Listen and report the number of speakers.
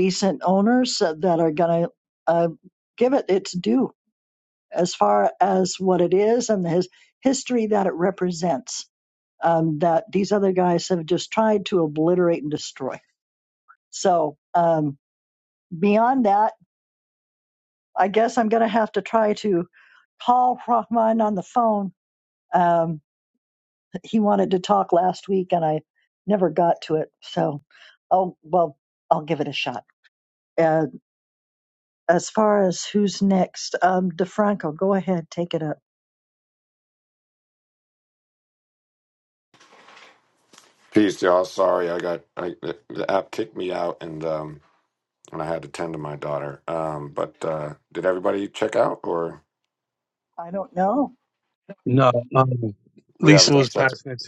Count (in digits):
3